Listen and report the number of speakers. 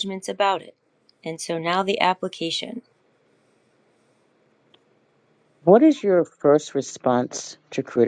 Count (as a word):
two